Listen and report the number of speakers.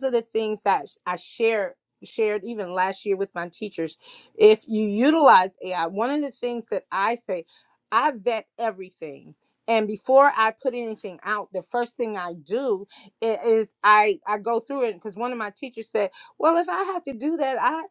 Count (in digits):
1